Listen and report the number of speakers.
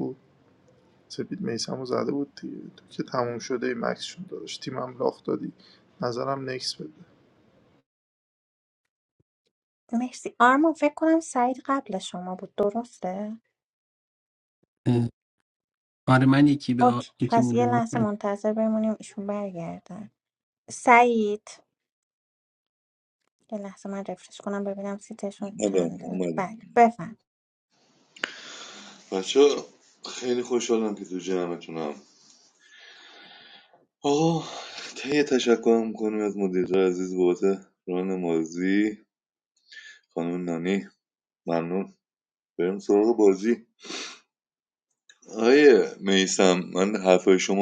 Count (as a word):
four